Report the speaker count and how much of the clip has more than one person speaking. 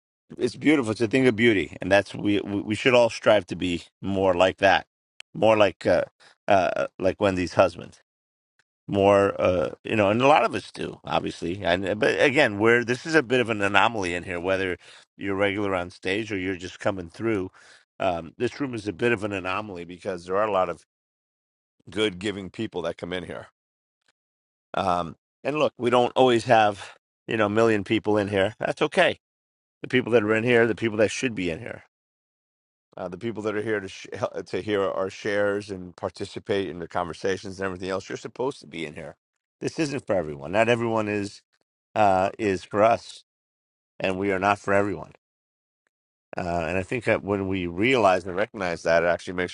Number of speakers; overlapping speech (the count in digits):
1, no overlap